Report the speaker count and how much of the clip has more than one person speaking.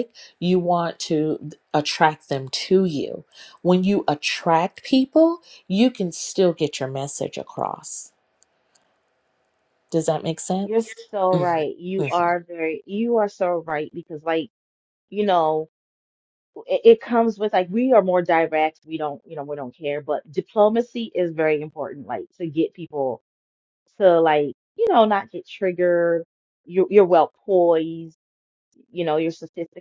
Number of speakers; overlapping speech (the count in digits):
2, about 3%